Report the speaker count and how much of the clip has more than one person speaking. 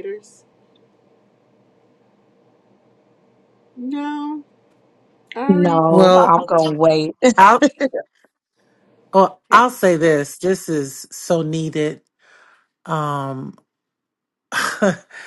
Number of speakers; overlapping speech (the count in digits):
3, about 6%